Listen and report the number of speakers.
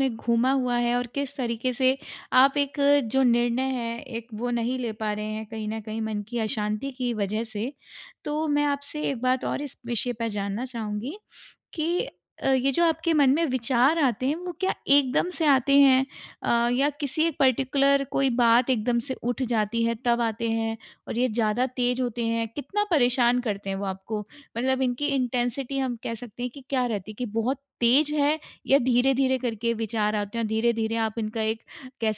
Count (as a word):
one